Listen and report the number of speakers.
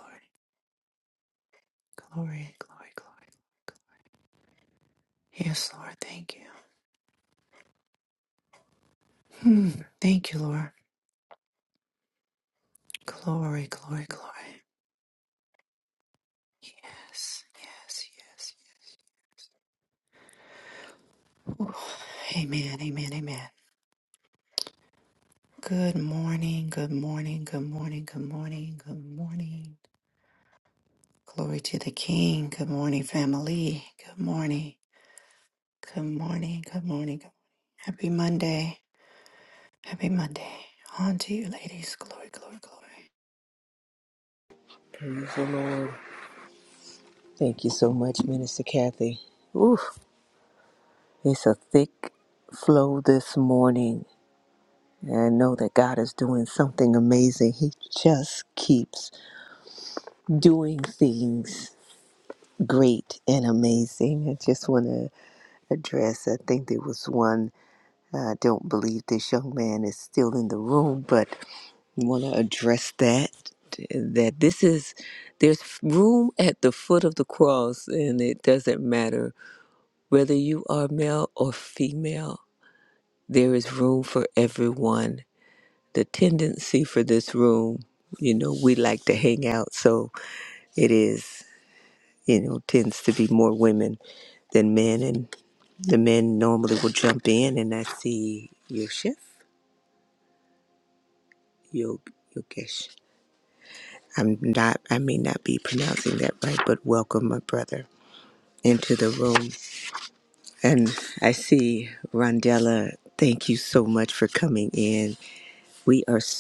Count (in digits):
2